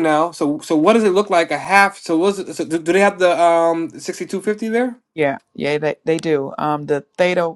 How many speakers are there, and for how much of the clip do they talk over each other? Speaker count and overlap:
2, no overlap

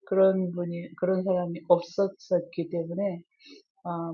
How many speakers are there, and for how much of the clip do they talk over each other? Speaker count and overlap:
1, no overlap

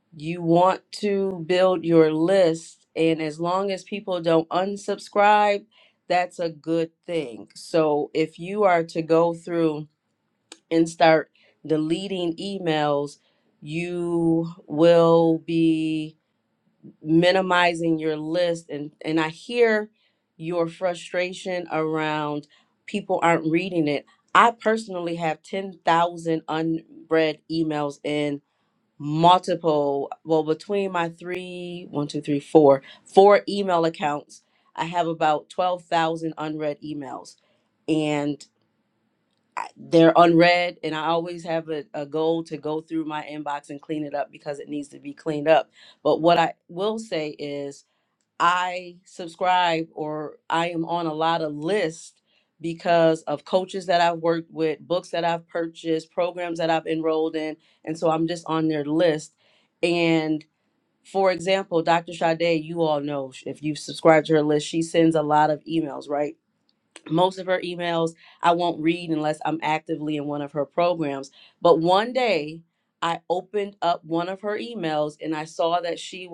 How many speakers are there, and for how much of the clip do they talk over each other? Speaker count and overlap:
1, no overlap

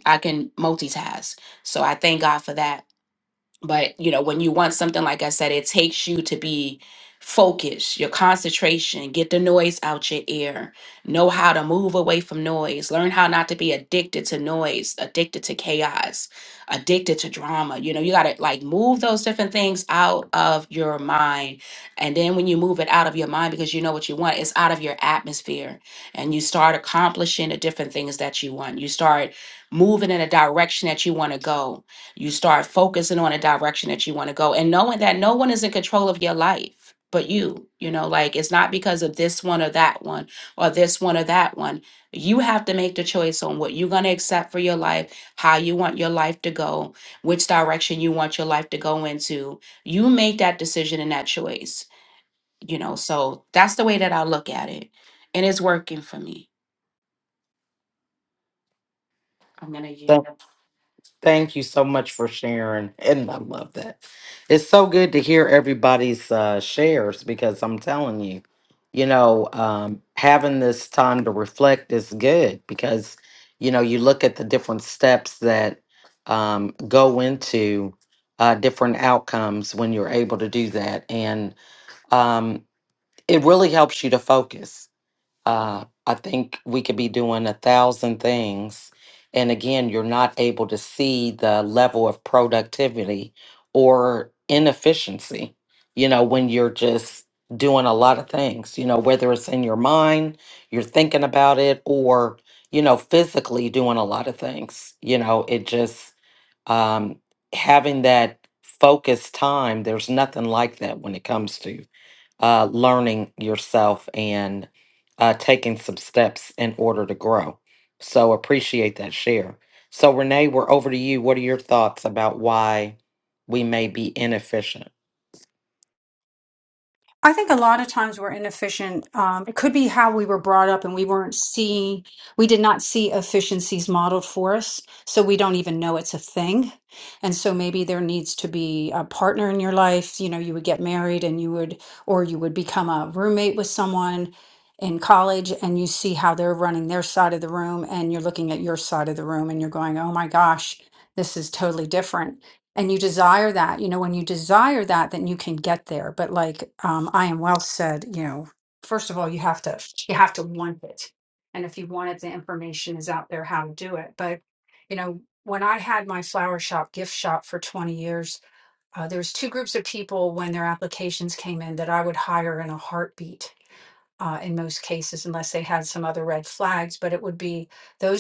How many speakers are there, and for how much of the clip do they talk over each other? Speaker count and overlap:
3, no overlap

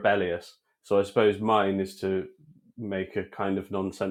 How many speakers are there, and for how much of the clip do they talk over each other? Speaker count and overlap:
1, no overlap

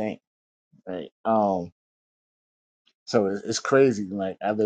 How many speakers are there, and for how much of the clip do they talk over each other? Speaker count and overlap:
1, no overlap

